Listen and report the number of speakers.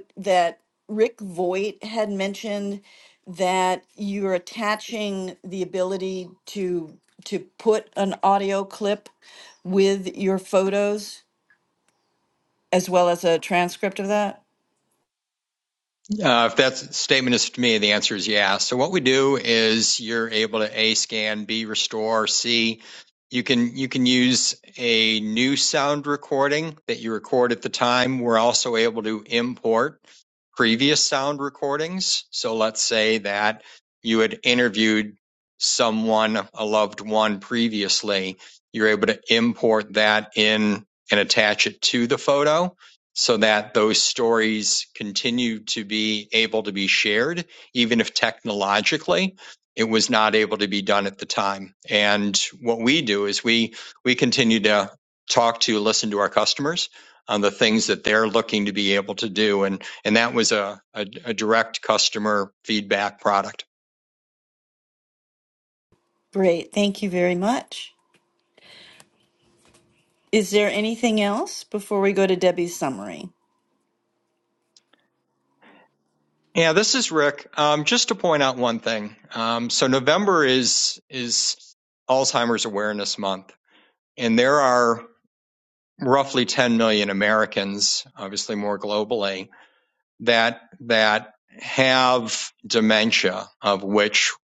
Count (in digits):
2